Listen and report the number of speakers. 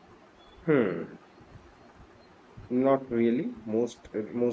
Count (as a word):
one